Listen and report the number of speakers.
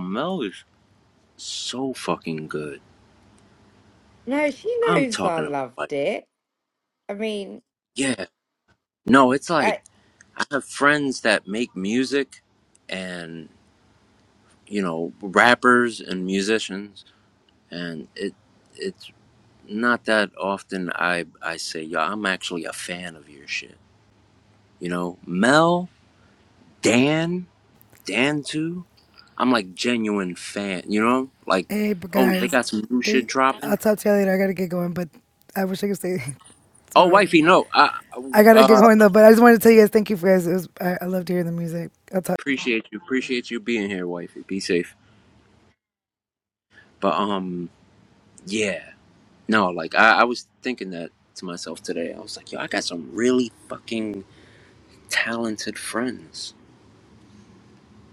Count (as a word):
three